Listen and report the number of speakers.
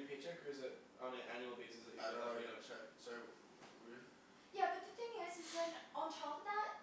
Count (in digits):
3